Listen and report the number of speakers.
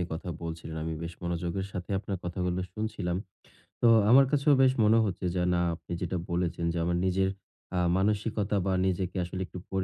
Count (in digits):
1